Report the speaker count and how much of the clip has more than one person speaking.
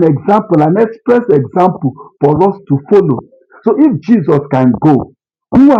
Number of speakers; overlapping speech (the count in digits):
1, no overlap